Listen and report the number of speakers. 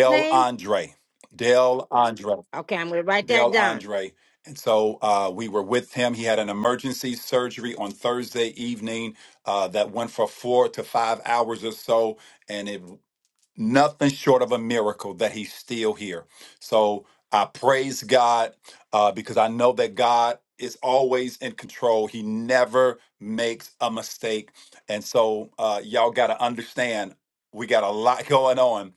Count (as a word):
two